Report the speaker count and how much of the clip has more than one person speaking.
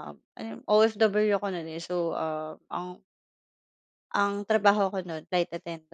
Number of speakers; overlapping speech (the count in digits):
1, no overlap